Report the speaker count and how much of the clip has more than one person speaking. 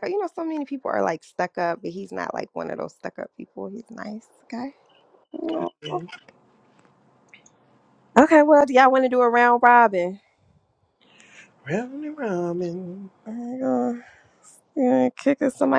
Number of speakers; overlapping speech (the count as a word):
two, no overlap